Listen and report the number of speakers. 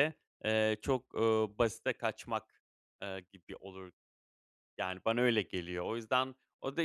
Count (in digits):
1